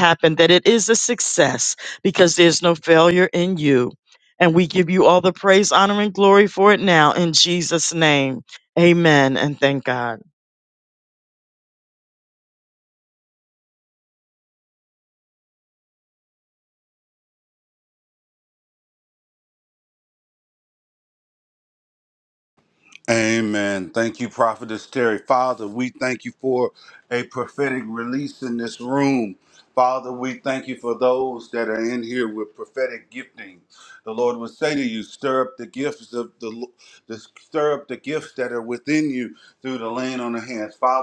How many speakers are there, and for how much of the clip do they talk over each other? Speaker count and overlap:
two, no overlap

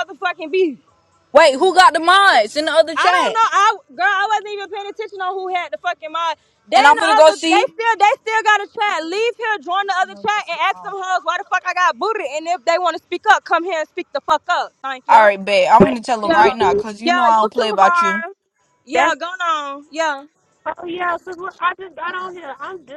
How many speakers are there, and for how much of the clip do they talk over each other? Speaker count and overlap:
three, about 15%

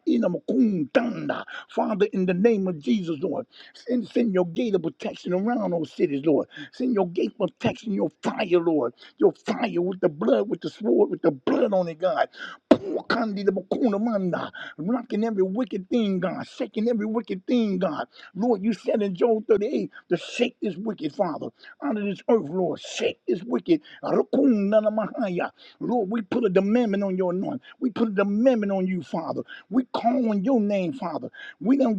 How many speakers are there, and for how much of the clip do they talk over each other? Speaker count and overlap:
one, no overlap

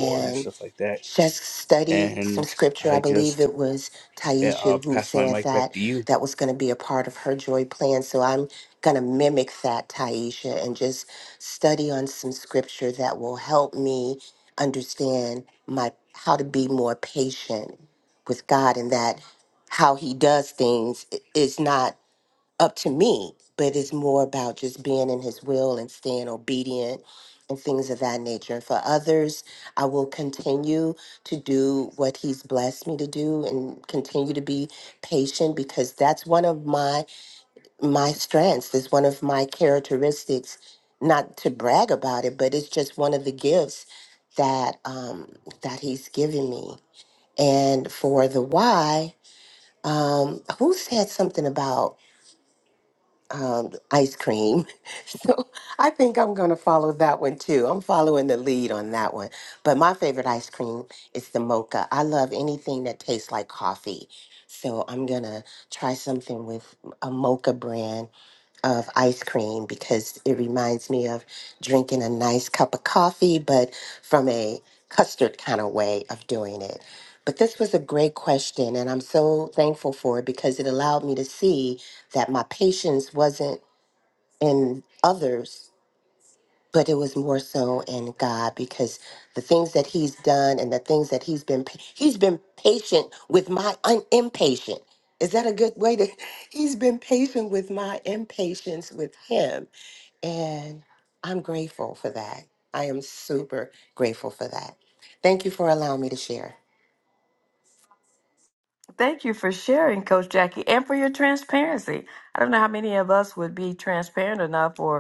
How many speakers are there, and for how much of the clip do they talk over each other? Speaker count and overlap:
three, about 3%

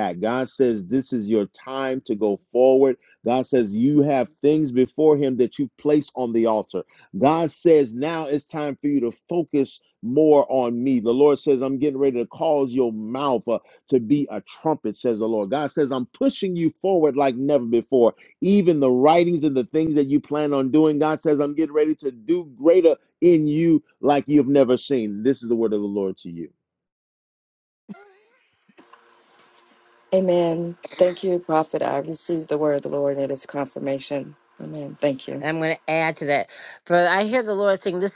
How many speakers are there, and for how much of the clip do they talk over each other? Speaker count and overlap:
three, under 1%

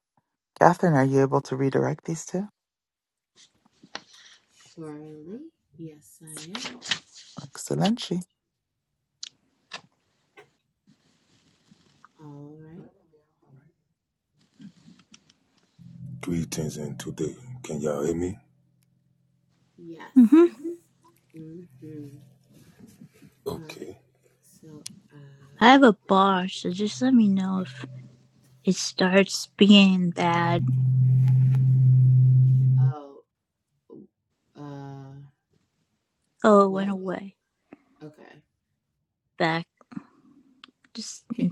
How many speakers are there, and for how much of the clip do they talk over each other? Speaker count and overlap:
four, about 3%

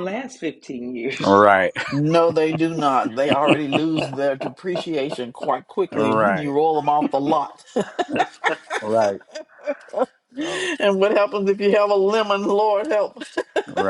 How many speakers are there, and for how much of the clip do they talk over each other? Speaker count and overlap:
three, about 5%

